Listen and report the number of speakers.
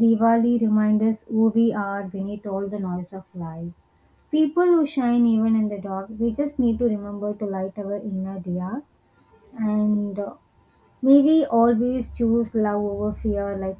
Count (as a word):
one